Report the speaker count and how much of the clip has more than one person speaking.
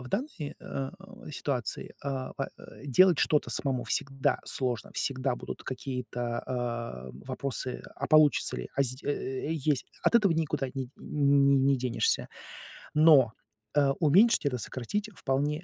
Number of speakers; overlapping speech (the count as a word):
one, no overlap